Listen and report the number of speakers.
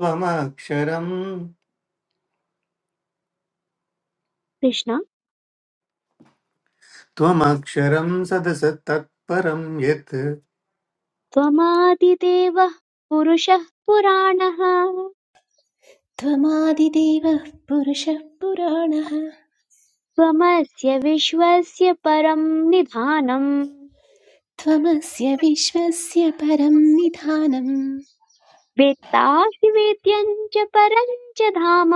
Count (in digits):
3